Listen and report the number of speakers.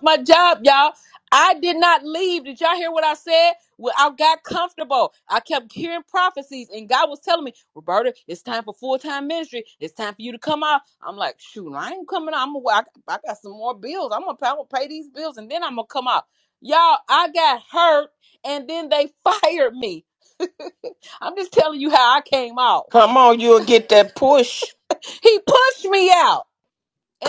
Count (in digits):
2